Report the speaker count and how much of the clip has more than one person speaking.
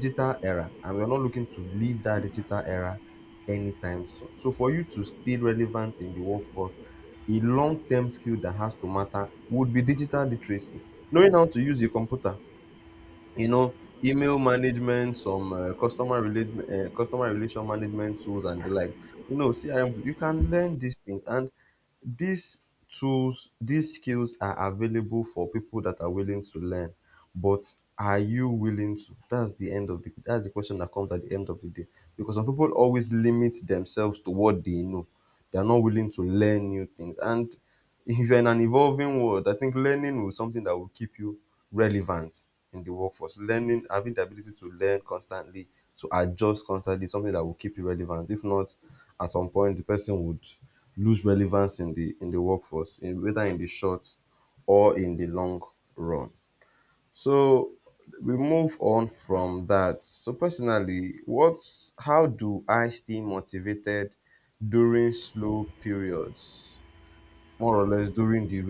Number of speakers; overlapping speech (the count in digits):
1, no overlap